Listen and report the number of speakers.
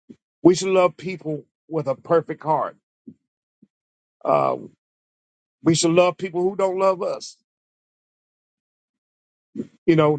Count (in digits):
1